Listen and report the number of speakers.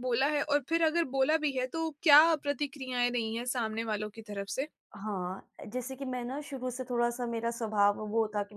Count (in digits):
2